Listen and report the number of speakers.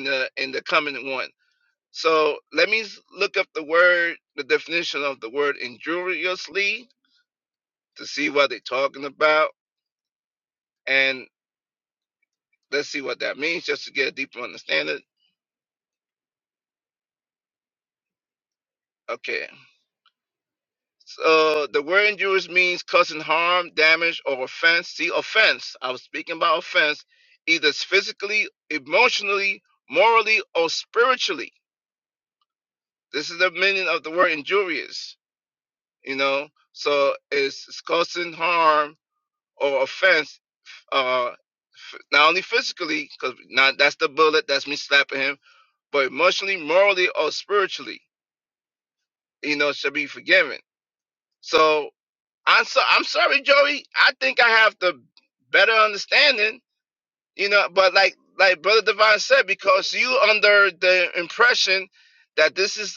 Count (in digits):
1